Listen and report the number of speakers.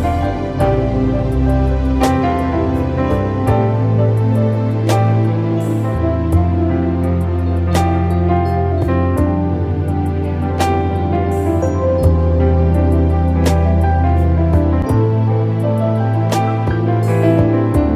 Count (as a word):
zero